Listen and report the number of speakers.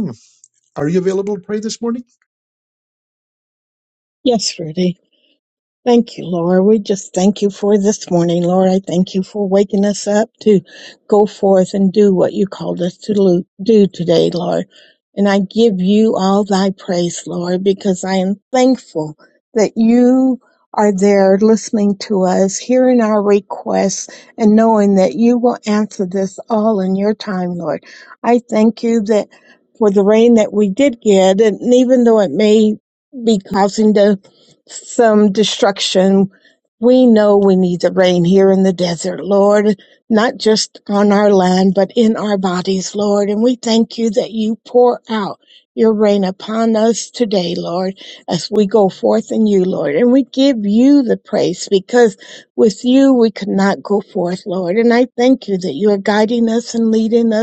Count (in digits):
2